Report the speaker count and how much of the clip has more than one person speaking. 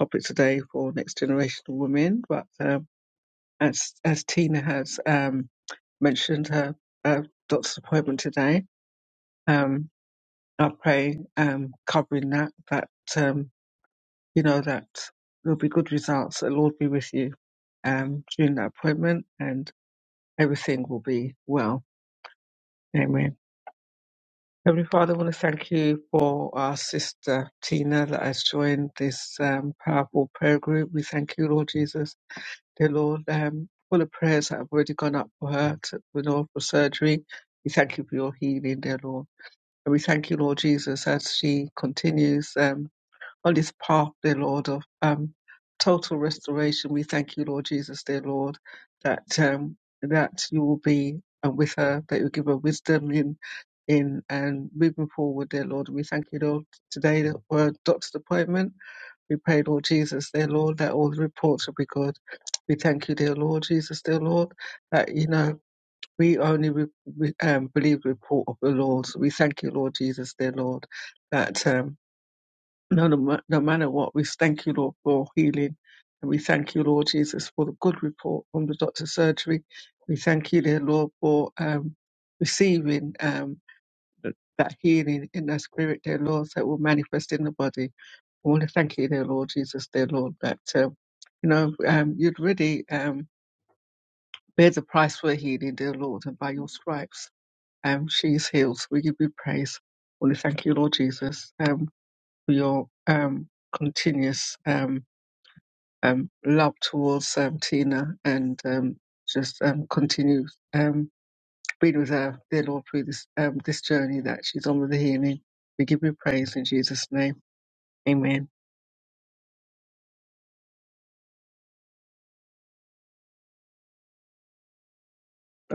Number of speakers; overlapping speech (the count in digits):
1, no overlap